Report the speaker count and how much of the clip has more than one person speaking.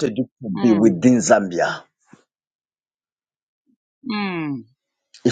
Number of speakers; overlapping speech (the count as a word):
two, about 9%